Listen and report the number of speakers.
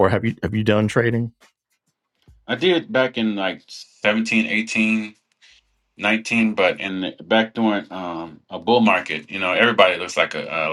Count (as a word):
two